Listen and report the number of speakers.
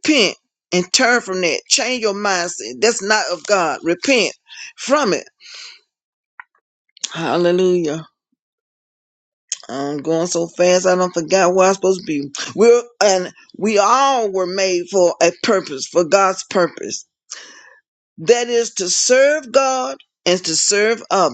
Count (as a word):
one